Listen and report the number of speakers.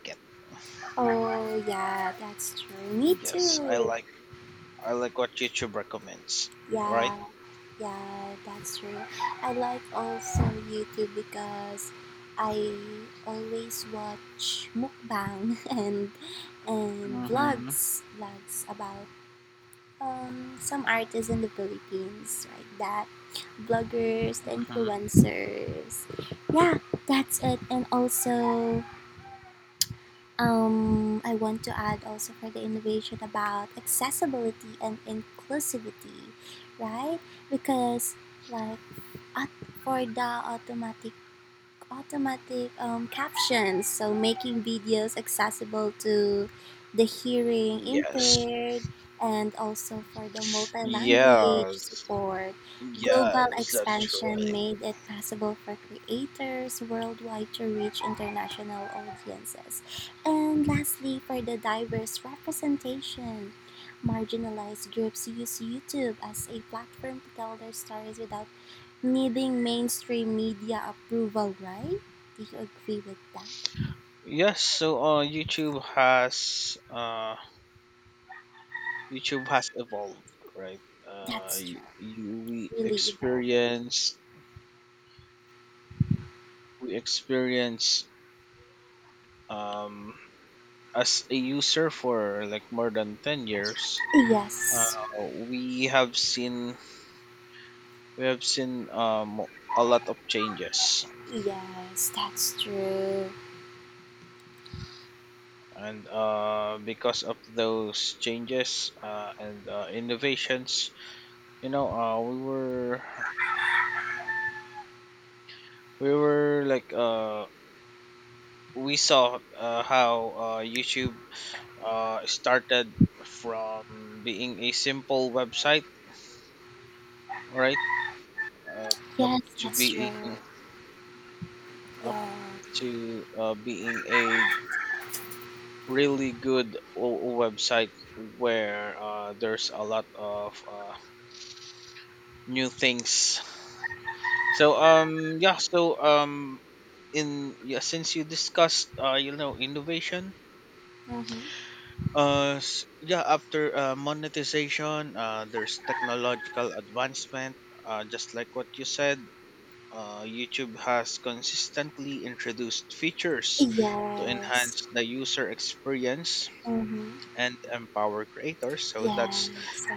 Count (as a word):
two